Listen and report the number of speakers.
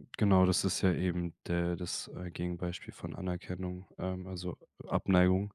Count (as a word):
one